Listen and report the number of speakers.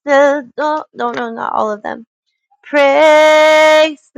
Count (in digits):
1